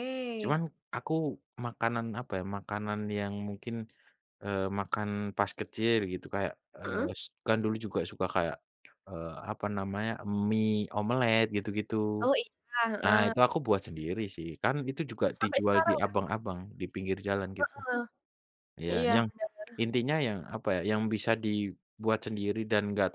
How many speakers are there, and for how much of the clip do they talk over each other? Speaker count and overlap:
two, about 8%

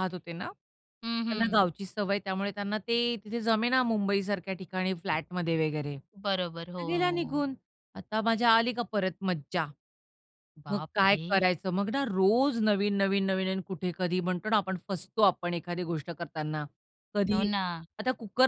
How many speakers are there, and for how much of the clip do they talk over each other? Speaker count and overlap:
two, about 9%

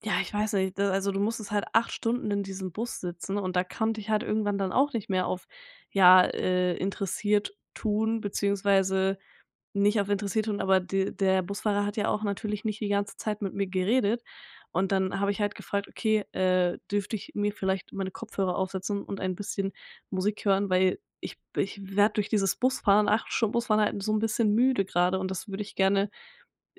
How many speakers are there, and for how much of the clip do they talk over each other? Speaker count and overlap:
one, no overlap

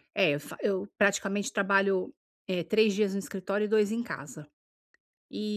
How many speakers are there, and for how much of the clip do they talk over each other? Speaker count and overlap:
one, no overlap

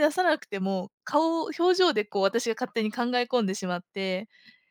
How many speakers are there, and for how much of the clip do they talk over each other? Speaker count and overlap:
one, no overlap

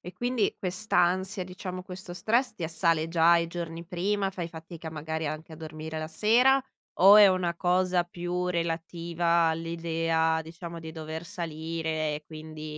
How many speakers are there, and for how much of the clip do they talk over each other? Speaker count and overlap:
one, no overlap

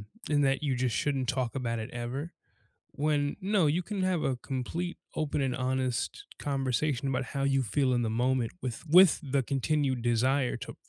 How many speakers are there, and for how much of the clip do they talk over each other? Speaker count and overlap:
one, no overlap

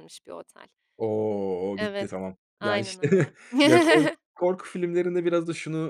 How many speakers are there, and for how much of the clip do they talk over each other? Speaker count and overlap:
two, about 13%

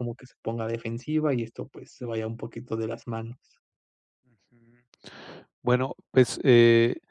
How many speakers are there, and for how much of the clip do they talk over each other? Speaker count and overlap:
two, no overlap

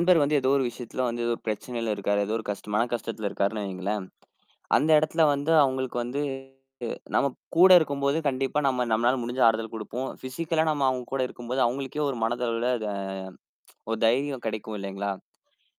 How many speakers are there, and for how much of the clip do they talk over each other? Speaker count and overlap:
one, no overlap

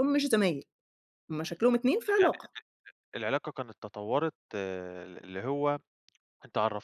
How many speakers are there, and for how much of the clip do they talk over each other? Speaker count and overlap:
two, about 4%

